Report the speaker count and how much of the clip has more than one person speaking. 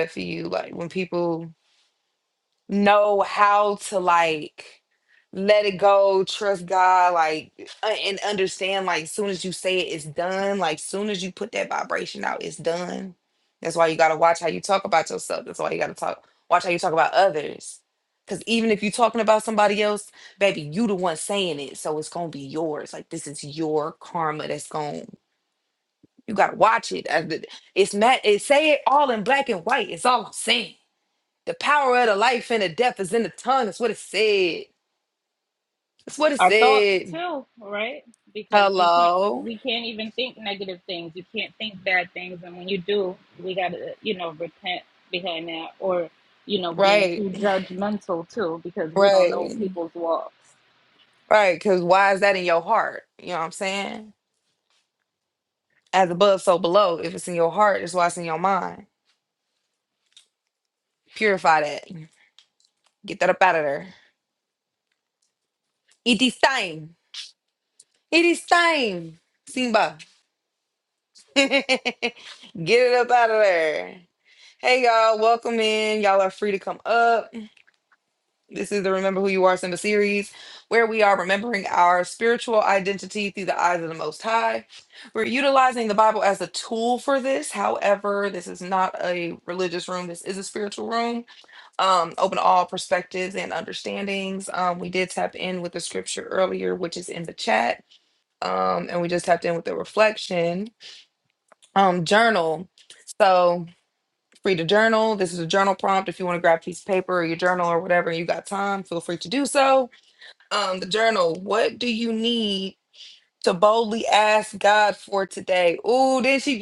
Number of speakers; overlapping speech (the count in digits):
2, about 2%